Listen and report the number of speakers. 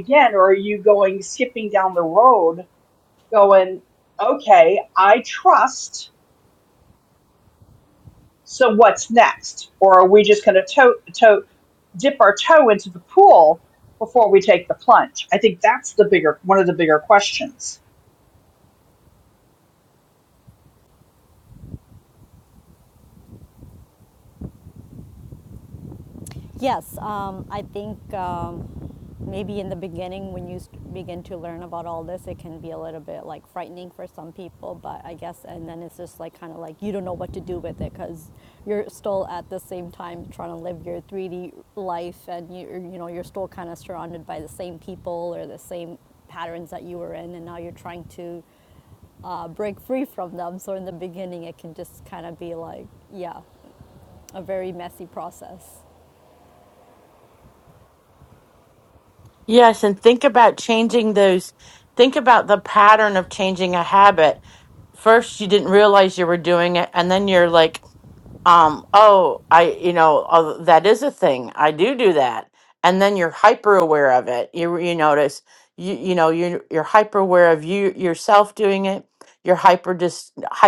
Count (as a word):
three